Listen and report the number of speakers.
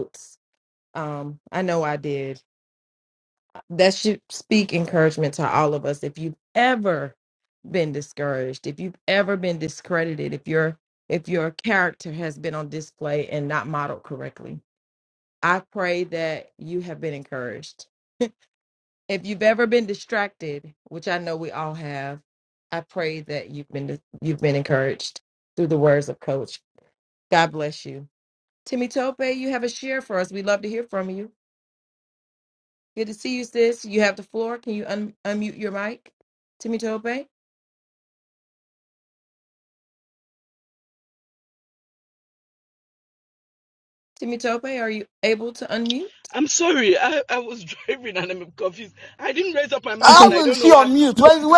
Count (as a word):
three